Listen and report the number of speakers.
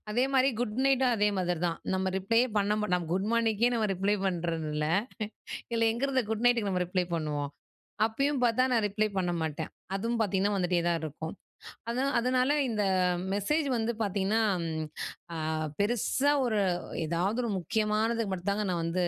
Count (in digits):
1